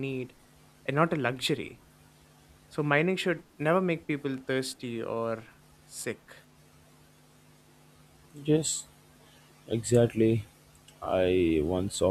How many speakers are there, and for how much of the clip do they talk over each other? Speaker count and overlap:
two, no overlap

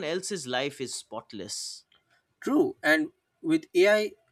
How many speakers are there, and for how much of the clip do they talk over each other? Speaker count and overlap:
two, no overlap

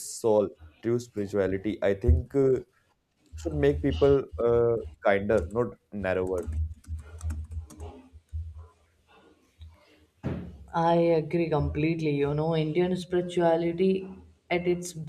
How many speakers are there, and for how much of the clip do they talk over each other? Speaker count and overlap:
two, no overlap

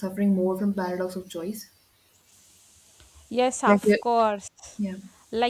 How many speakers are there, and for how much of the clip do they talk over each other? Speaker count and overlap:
two, about 7%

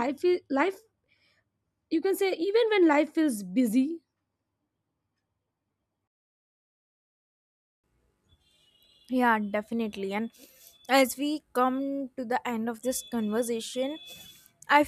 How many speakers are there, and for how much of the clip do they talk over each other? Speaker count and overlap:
two, no overlap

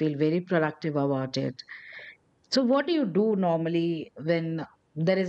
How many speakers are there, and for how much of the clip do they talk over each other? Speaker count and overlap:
one, no overlap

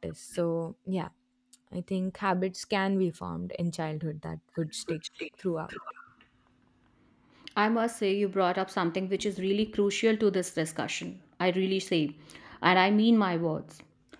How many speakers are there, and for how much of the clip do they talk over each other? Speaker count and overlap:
two, no overlap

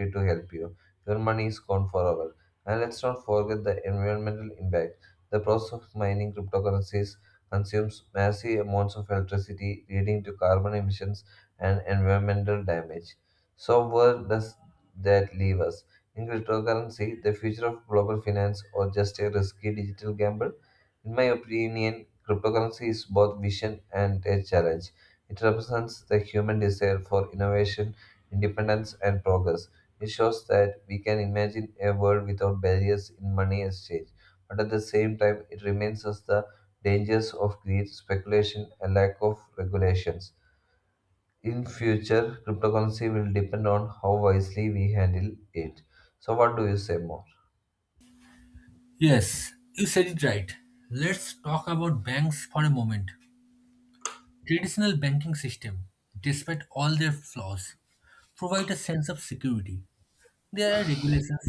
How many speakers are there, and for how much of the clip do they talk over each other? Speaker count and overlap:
two, no overlap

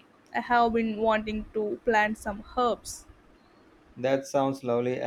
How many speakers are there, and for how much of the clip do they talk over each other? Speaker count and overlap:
two, no overlap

